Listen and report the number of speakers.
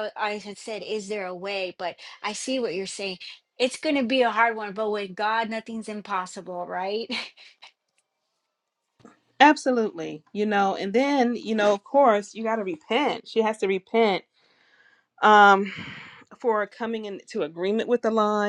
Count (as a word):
two